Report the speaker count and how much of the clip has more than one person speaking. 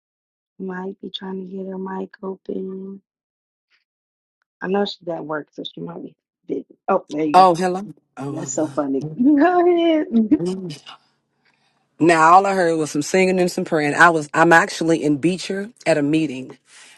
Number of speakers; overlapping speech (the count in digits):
2, about 2%